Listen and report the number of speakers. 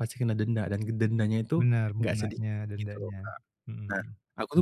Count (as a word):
two